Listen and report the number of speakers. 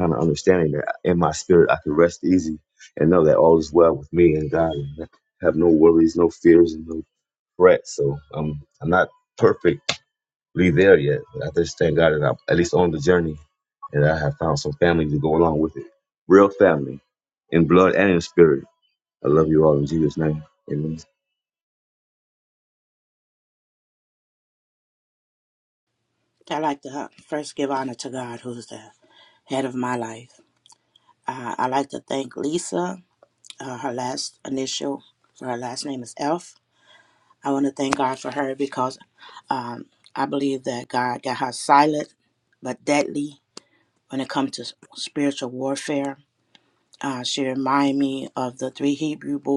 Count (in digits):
2